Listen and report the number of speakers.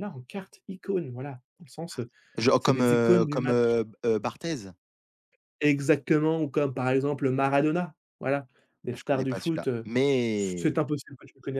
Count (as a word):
two